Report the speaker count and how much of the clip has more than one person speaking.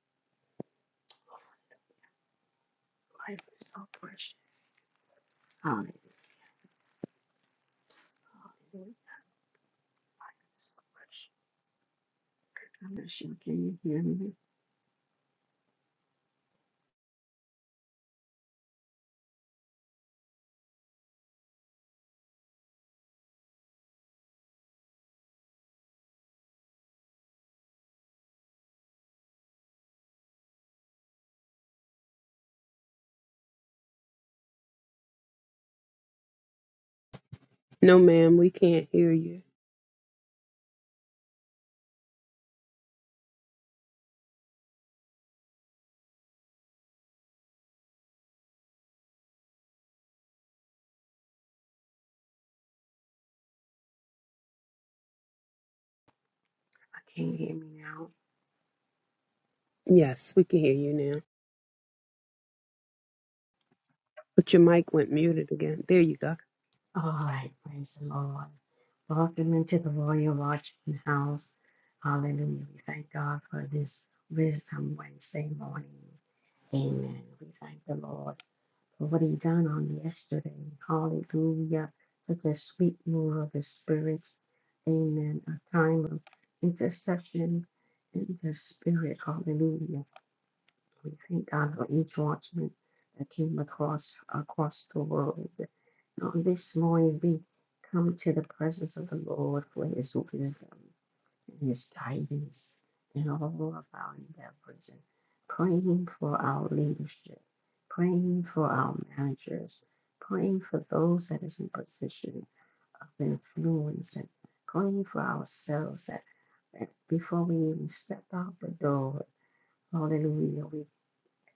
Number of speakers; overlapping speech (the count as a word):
two, no overlap